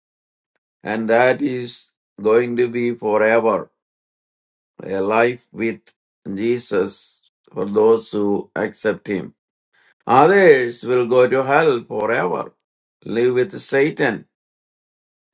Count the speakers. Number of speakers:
1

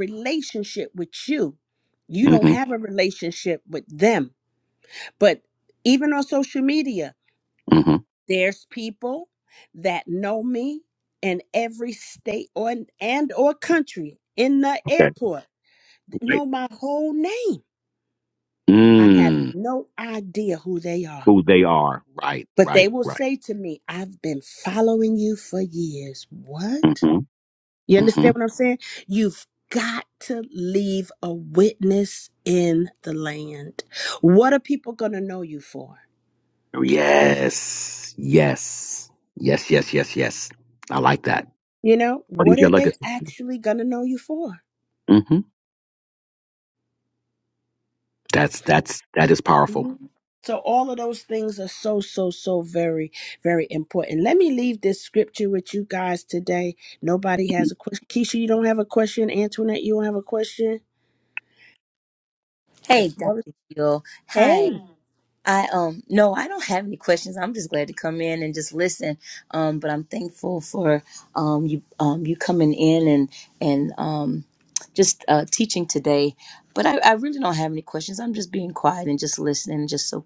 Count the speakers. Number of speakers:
3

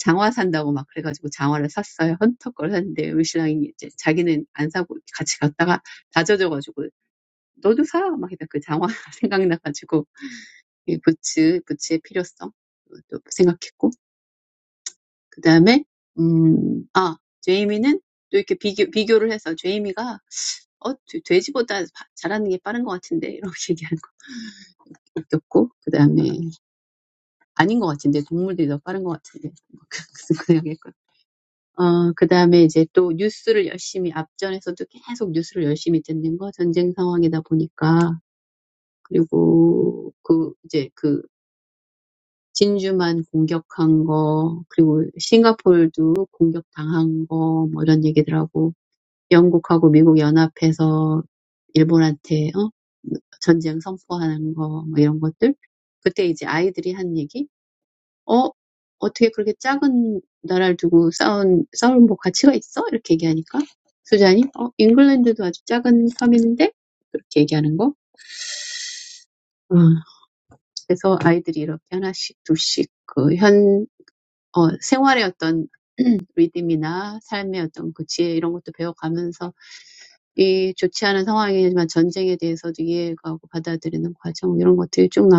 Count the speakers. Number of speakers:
1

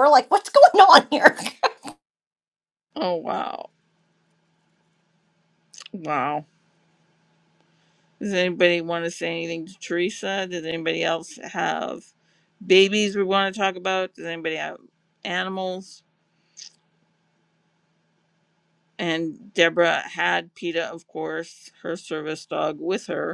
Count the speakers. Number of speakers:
2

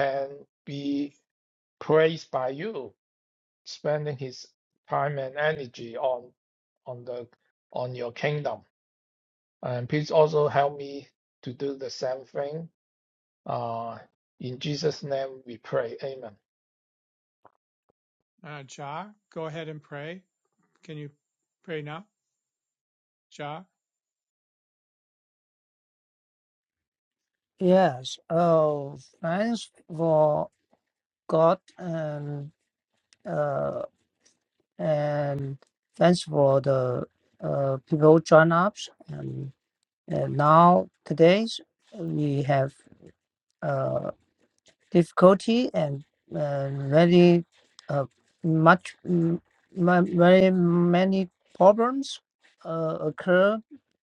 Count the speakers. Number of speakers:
3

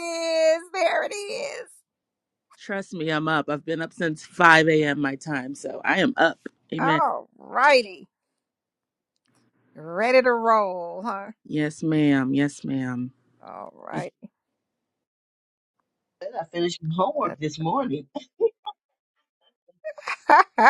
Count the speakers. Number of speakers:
3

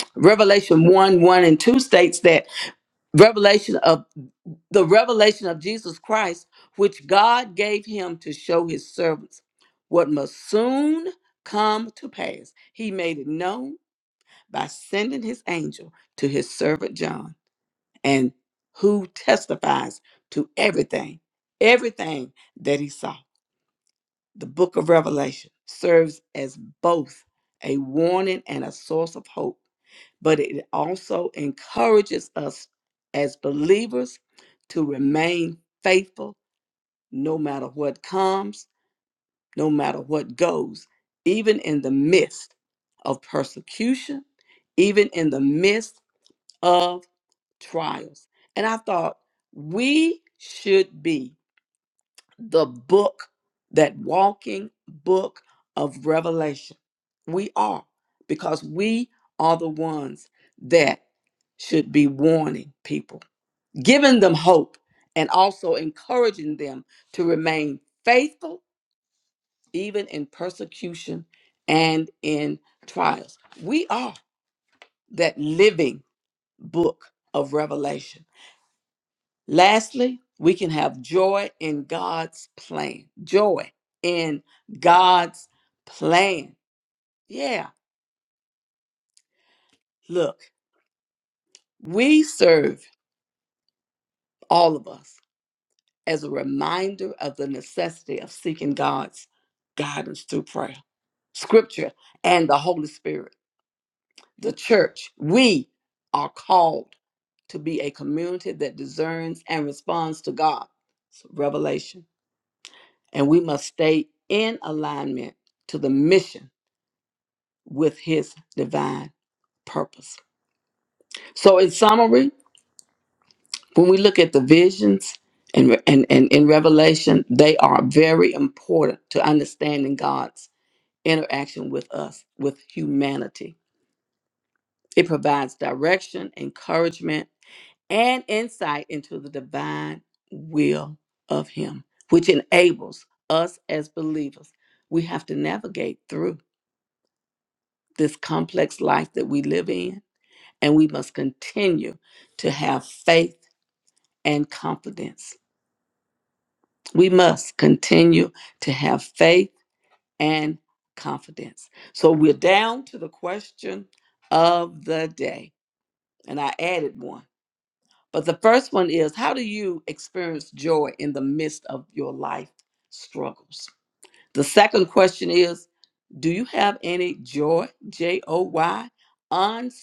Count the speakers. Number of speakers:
1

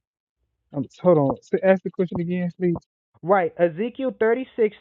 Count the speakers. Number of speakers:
2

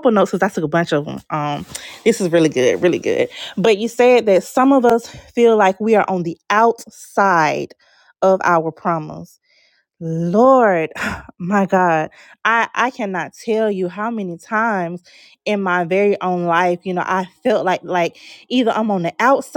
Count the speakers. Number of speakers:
1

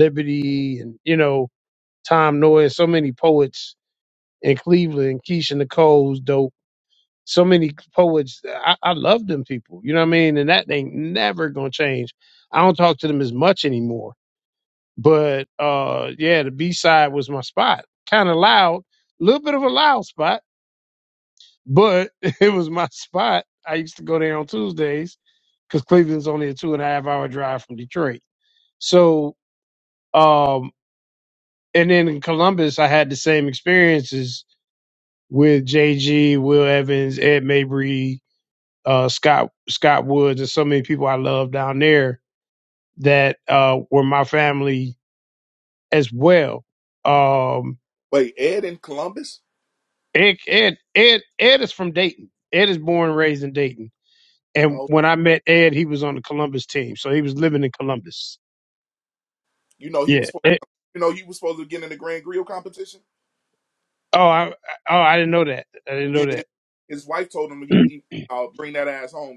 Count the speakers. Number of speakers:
2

